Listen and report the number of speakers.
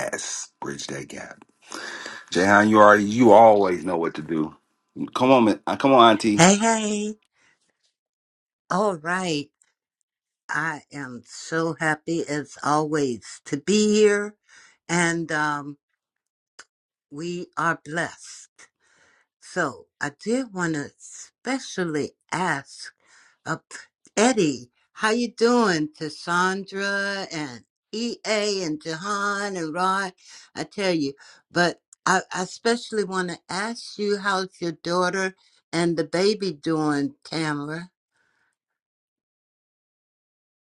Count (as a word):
two